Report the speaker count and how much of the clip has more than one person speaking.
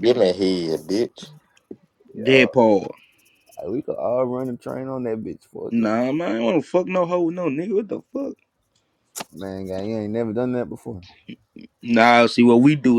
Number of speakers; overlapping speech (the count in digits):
3, about 4%